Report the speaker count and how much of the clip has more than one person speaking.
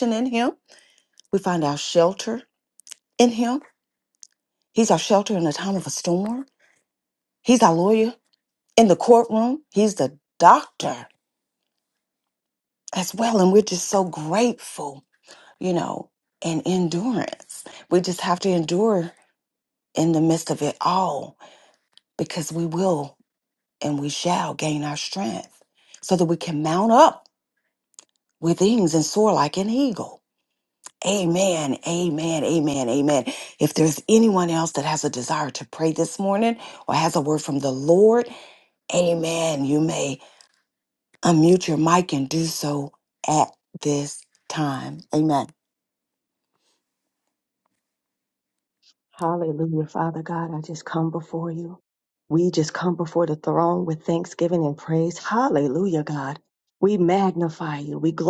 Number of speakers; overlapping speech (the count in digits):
2, no overlap